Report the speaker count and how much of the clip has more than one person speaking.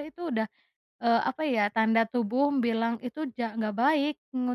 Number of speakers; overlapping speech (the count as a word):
one, no overlap